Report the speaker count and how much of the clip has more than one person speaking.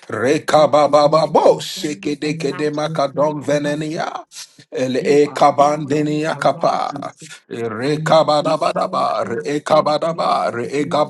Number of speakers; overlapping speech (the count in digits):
2, about 74%